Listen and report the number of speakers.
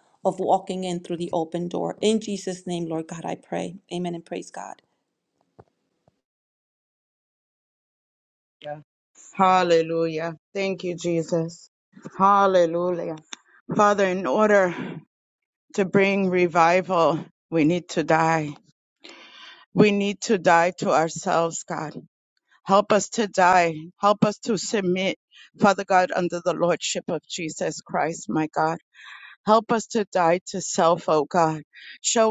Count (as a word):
two